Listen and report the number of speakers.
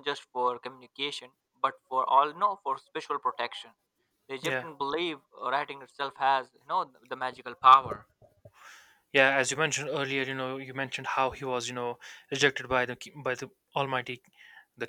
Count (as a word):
two